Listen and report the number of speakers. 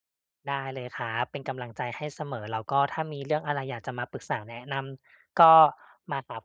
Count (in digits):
1